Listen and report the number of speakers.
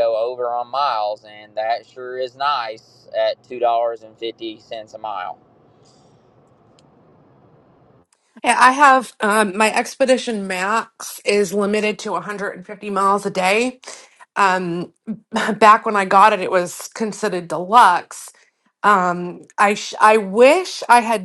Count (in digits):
2